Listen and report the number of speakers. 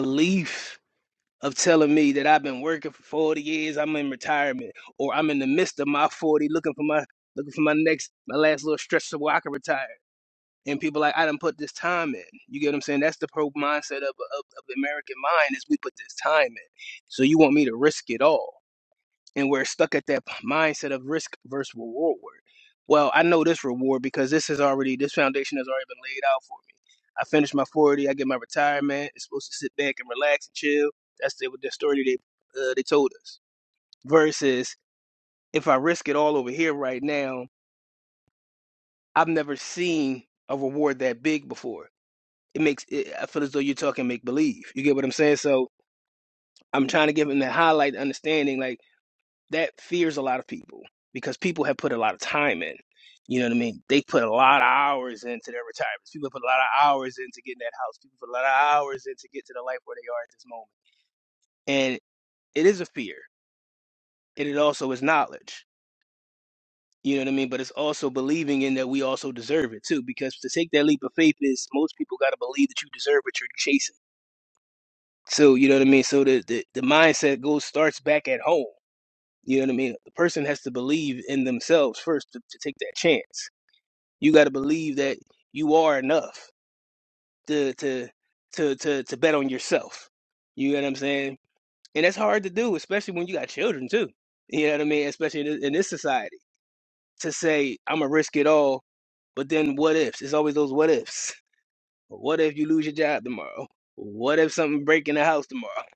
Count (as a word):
one